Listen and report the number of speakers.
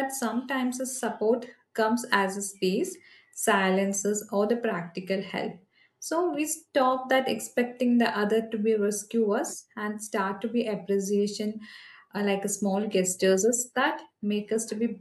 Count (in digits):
1